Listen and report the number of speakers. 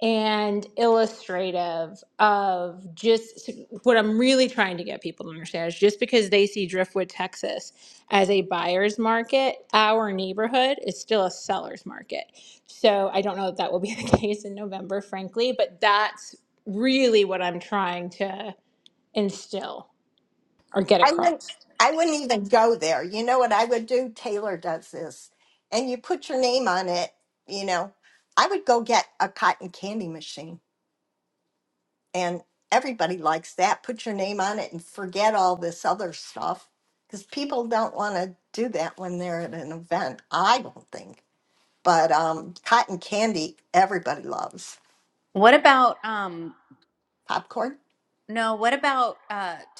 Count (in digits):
3